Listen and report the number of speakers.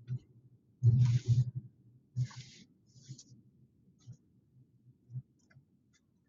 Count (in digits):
0